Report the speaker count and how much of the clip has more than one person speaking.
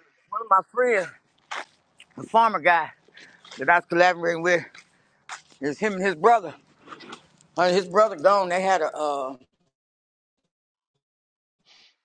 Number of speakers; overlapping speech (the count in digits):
1, no overlap